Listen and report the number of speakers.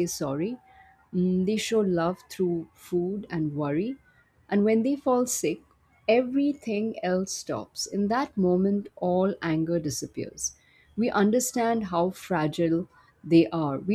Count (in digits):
1